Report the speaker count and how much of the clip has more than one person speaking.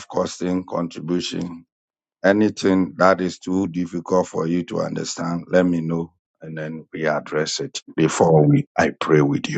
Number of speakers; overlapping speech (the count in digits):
1, no overlap